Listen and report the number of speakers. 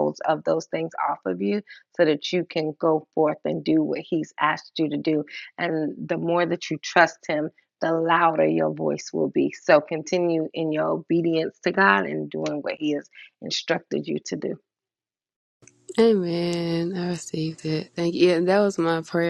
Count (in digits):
2